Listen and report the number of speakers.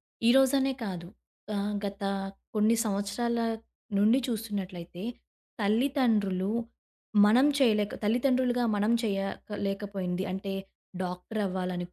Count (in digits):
1